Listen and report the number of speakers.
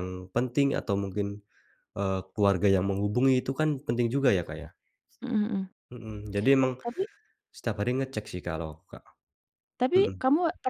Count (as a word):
two